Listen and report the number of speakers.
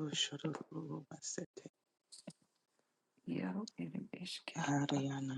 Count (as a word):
two